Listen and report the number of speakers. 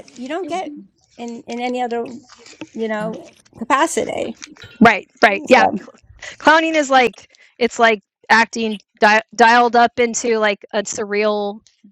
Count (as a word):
two